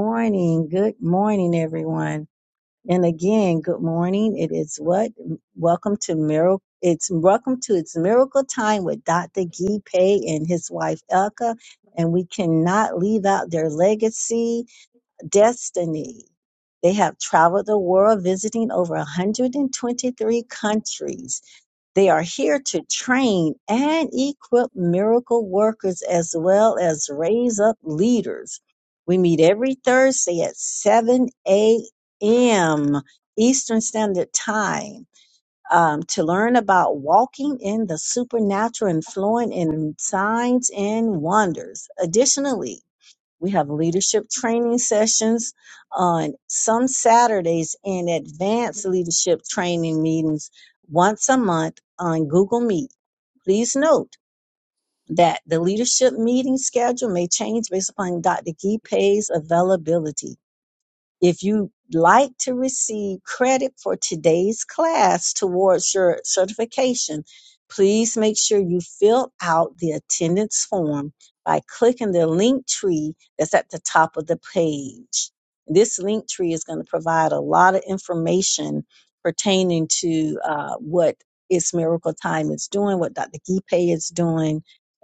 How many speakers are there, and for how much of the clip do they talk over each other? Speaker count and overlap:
1, no overlap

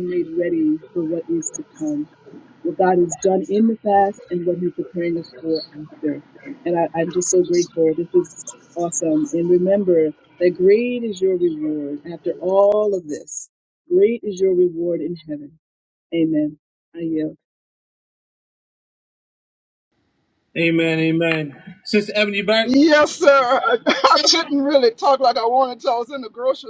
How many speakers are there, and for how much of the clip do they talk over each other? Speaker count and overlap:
3, under 1%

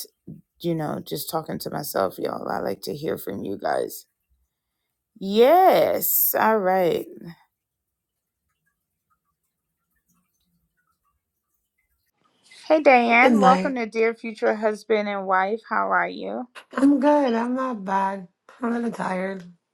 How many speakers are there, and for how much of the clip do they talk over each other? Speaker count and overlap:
2, about 3%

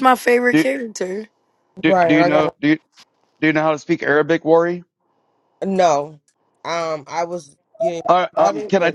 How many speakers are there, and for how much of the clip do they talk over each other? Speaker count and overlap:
3, about 20%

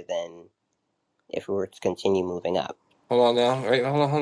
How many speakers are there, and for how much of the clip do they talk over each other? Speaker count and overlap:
2, no overlap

